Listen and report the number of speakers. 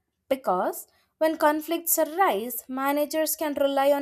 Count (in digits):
1